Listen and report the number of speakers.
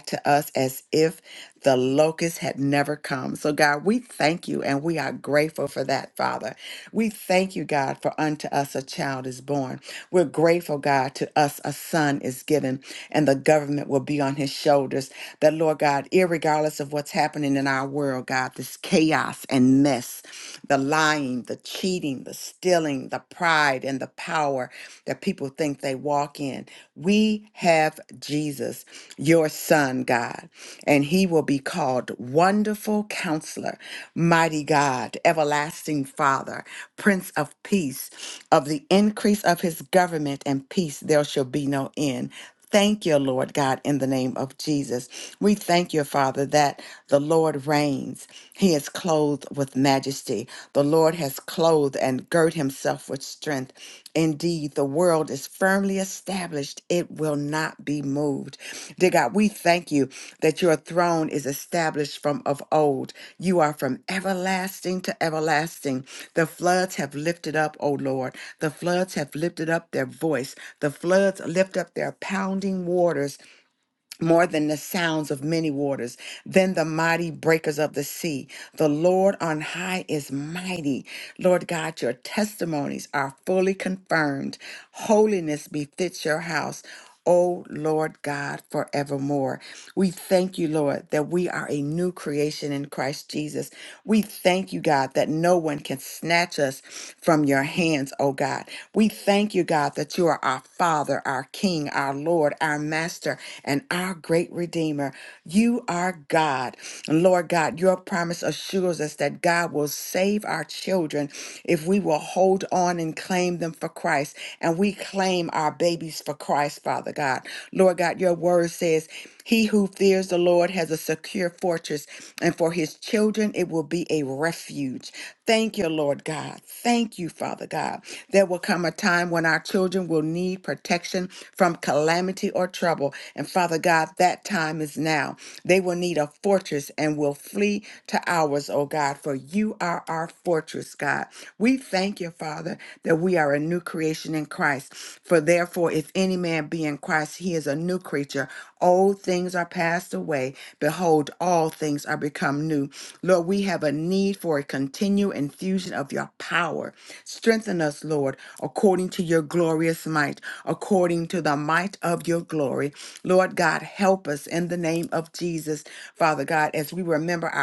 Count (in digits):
1